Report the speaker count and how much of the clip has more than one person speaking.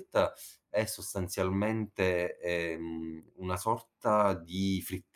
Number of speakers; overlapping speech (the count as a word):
one, no overlap